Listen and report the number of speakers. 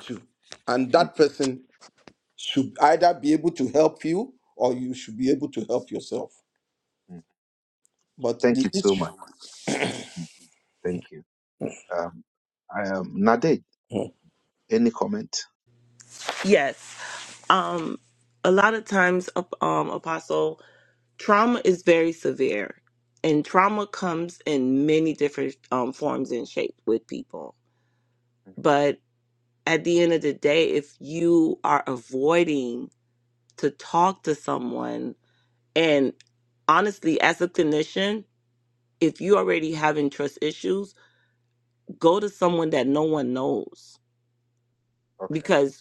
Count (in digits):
3